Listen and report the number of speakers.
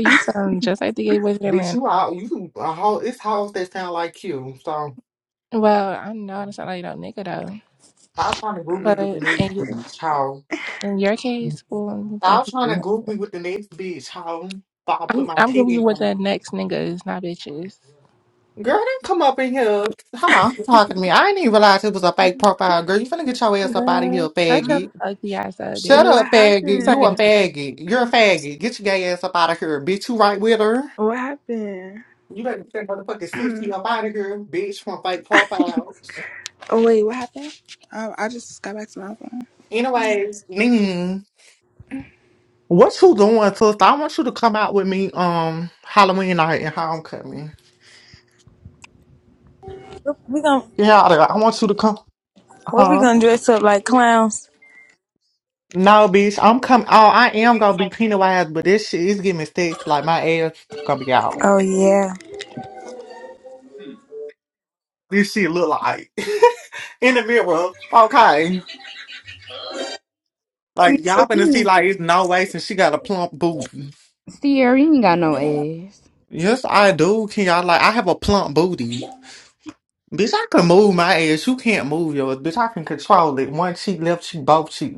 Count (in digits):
5